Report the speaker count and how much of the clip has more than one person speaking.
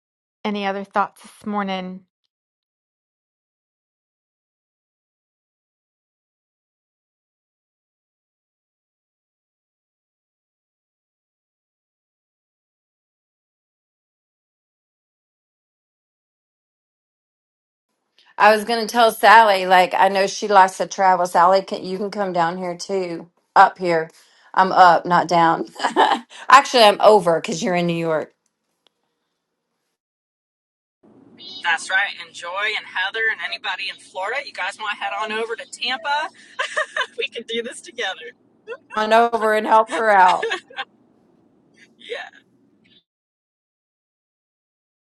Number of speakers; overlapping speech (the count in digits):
3, no overlap